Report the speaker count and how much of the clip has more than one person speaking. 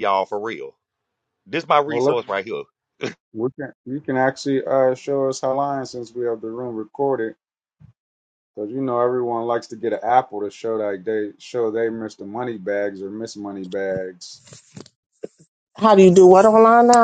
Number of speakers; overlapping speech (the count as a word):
three, about 2%